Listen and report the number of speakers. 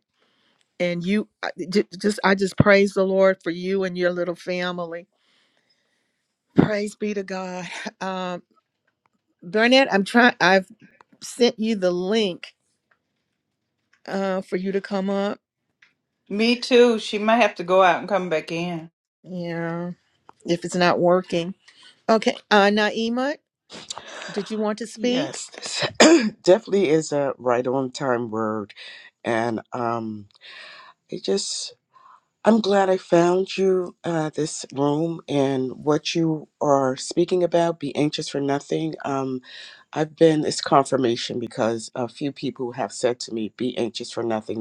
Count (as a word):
three